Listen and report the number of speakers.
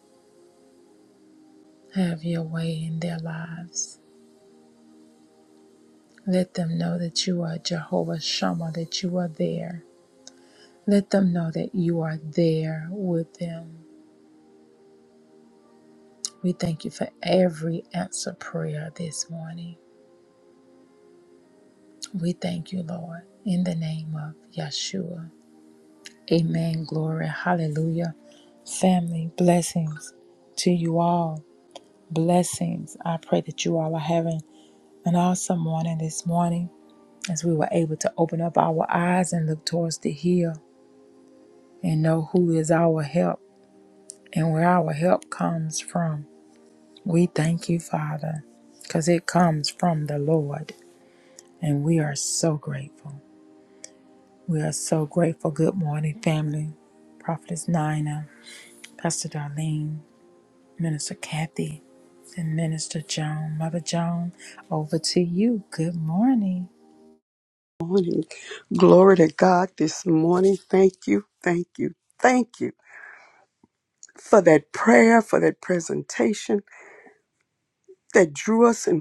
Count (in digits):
2